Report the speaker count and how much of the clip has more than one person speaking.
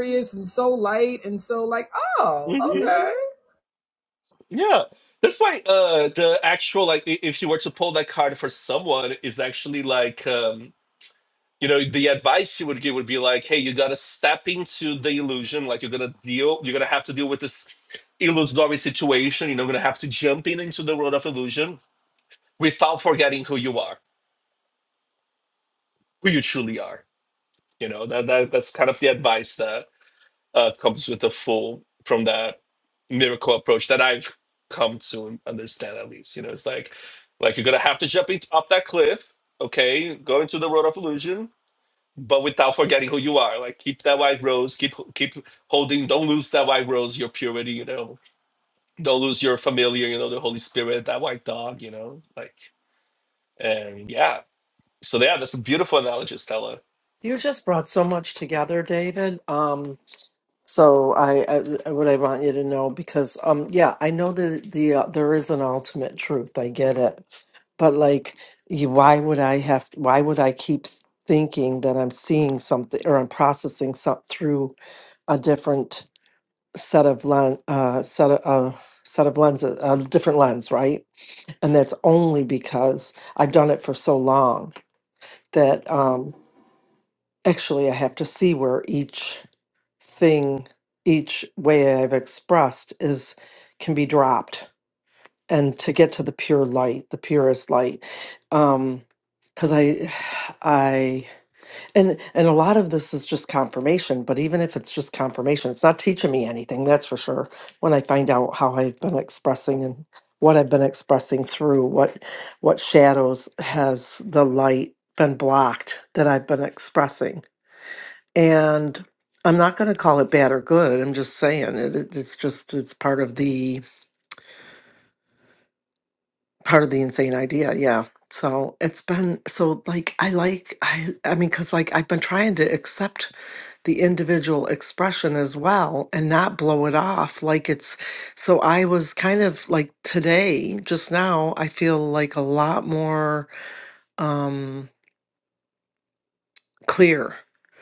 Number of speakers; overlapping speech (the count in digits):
3, under 1%